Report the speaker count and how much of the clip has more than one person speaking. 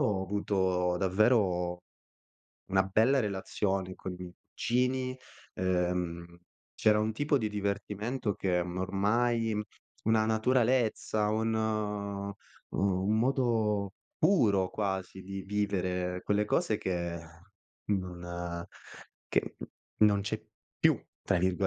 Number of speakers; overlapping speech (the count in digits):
1, no overlap